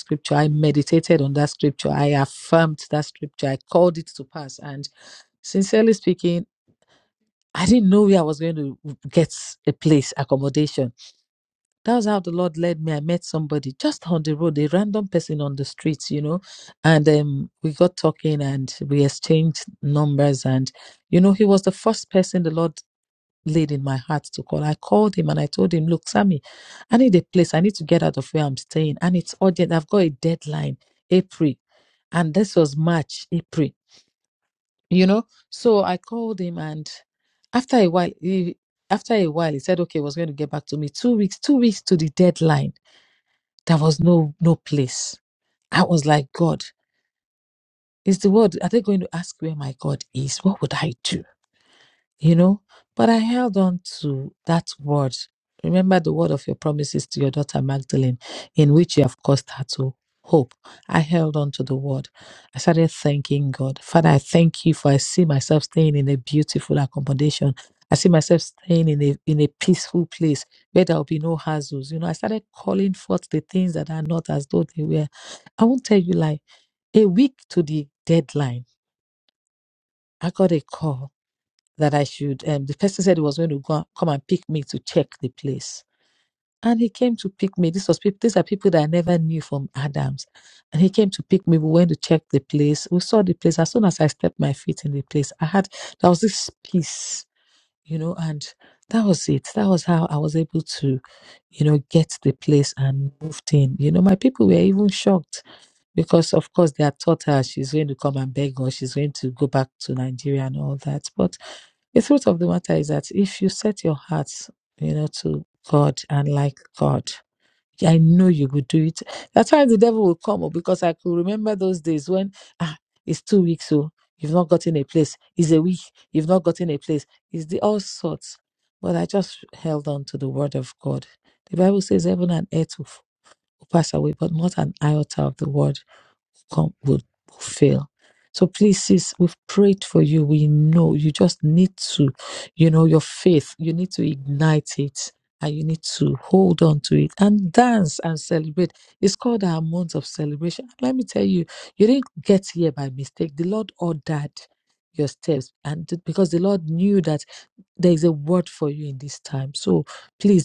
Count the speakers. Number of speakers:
1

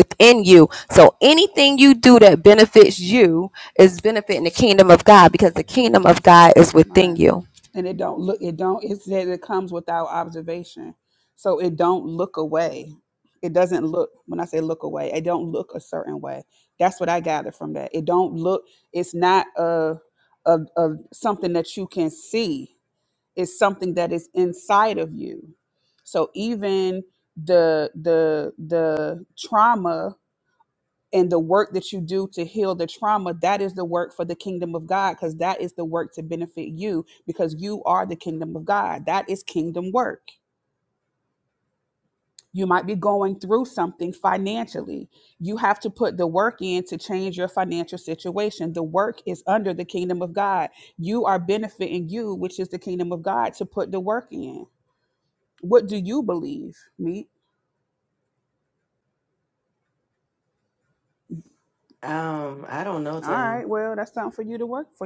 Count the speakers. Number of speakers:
3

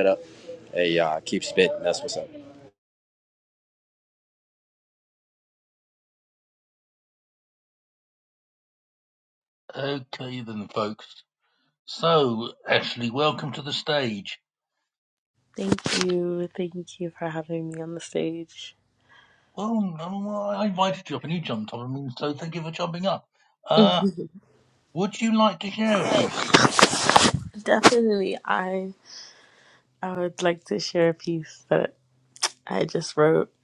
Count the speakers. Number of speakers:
3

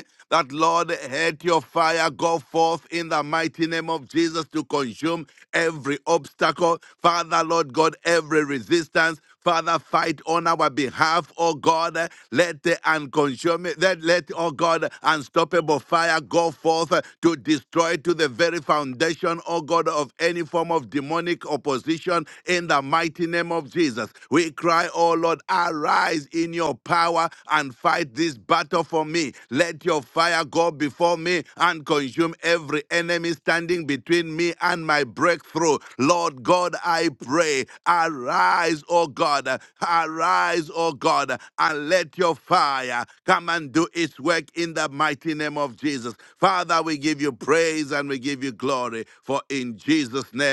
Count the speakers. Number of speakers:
1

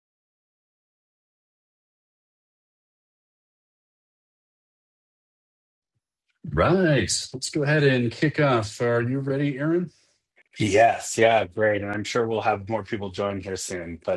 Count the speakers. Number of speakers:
2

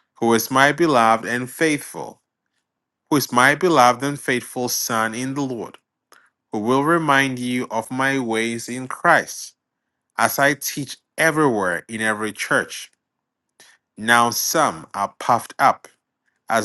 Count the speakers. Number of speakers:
1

